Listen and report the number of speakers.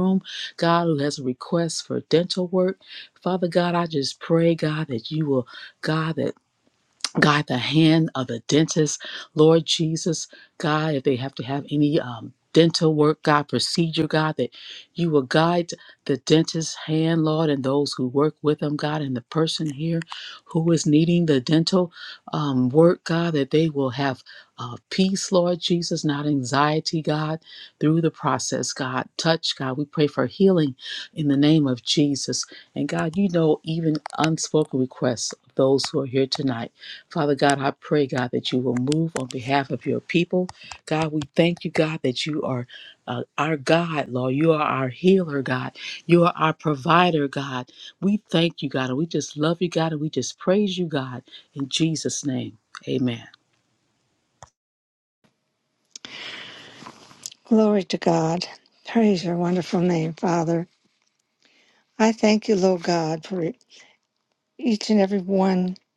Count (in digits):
2